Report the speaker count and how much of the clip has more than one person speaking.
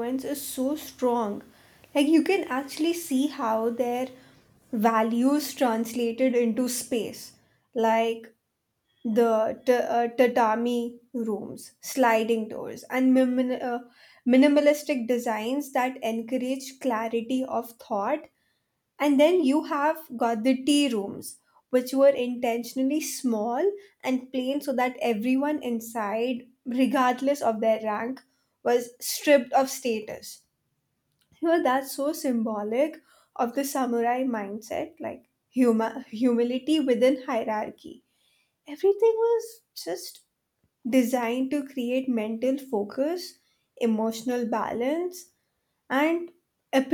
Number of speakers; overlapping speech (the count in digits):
1, no overlap